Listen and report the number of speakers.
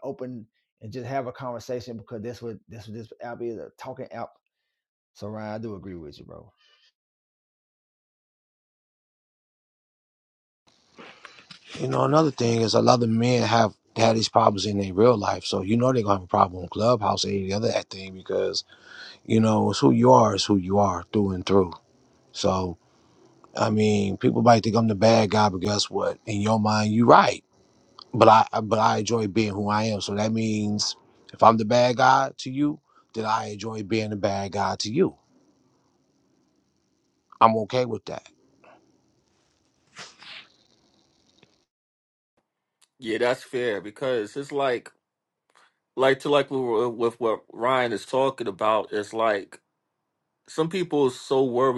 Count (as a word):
three